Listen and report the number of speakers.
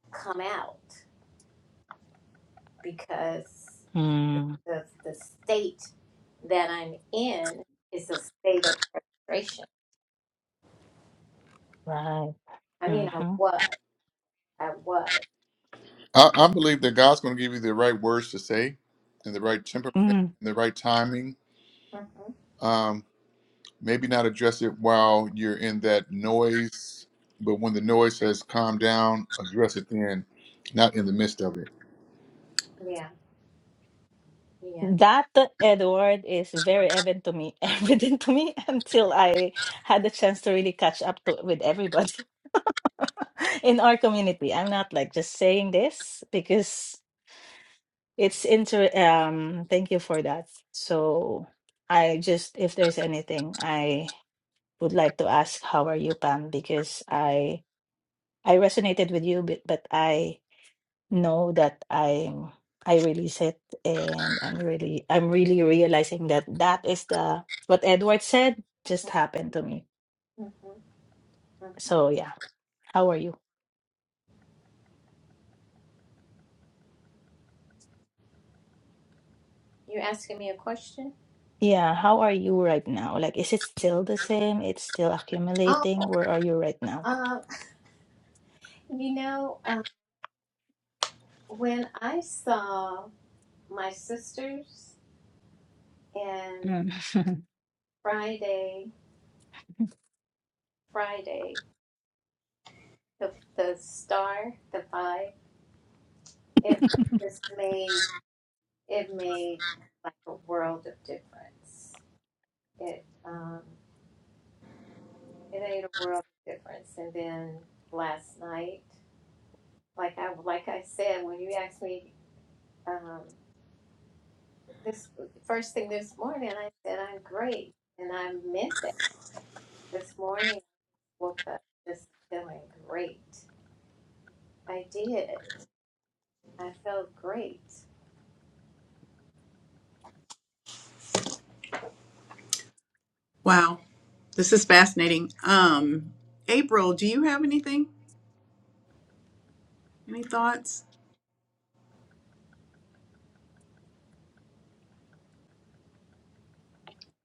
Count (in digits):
4